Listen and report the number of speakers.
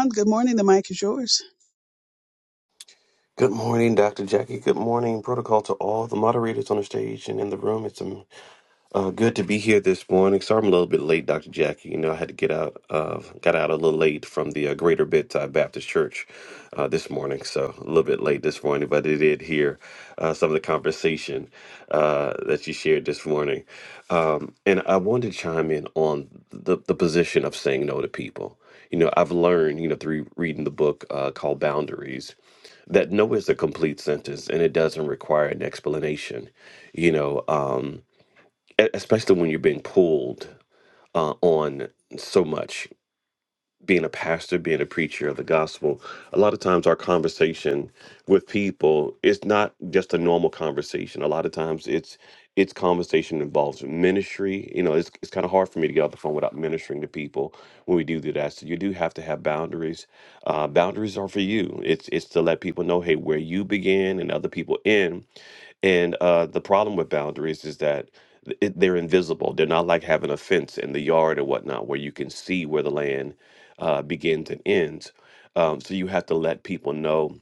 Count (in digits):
2